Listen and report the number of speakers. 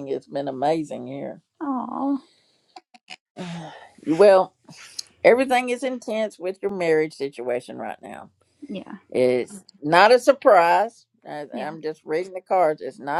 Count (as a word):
two